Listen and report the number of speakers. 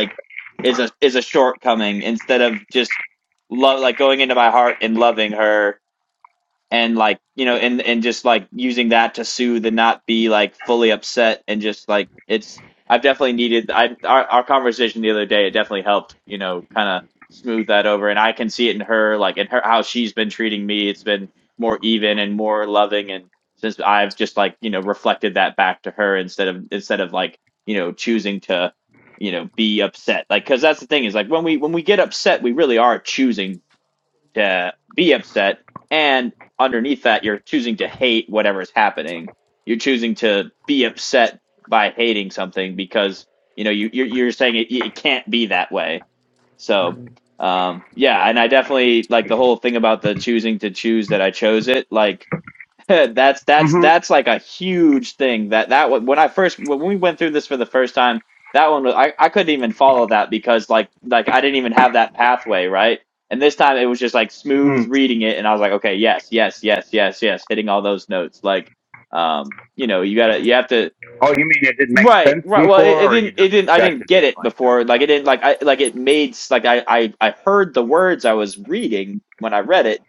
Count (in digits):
2